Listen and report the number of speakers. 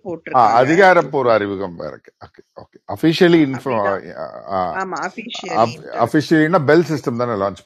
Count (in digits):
2